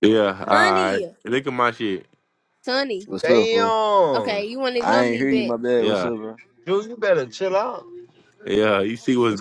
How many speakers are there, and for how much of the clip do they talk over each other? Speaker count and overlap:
4, about 26%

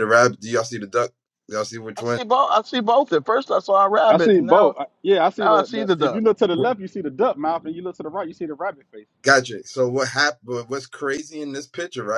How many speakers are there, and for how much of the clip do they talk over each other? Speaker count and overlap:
3, about 14%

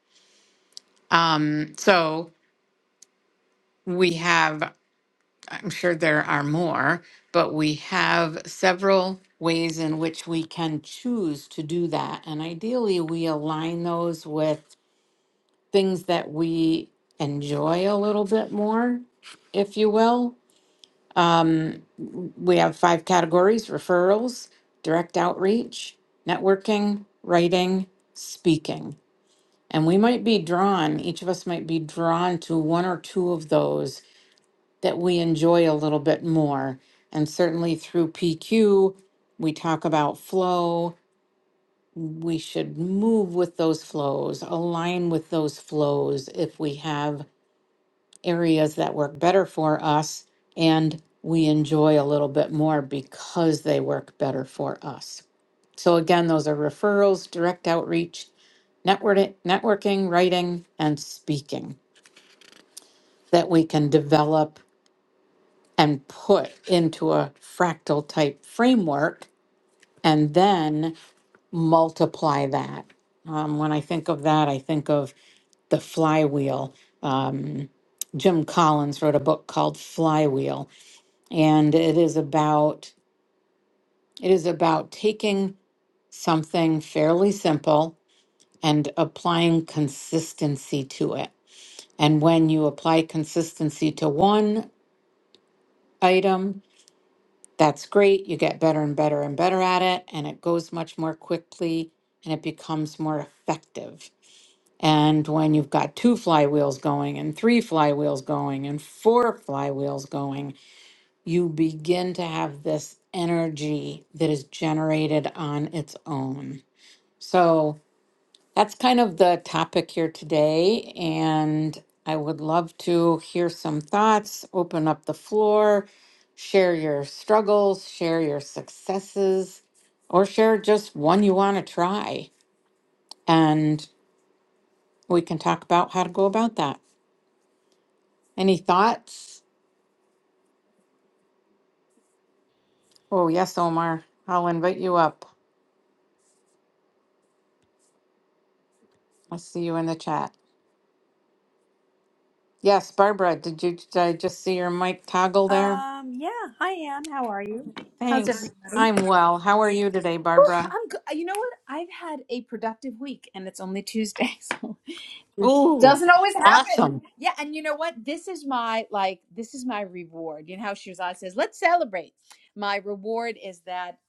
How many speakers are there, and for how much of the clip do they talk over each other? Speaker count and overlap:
2, about 1%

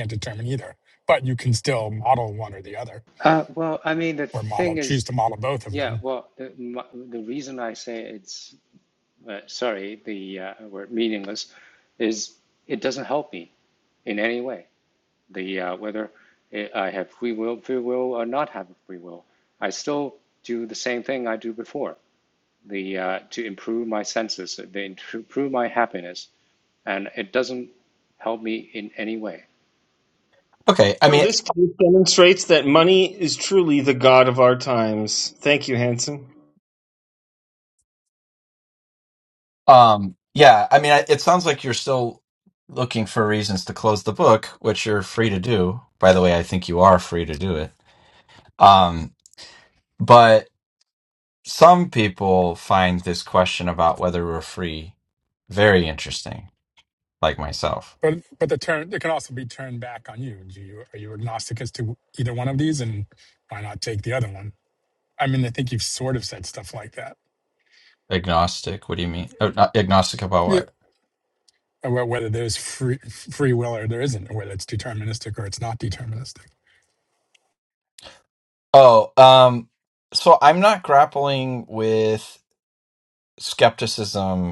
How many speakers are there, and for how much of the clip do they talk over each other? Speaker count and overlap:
4, about 1%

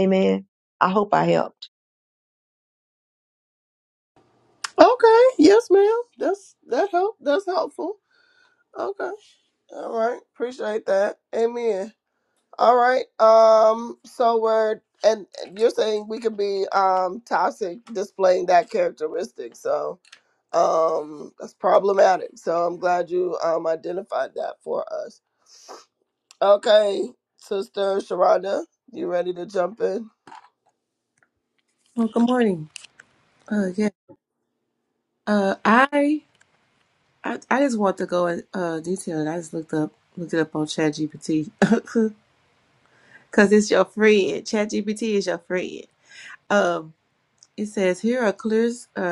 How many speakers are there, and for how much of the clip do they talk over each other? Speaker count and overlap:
3, no overlap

